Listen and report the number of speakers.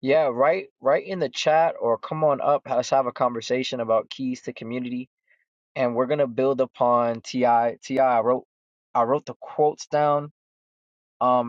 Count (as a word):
one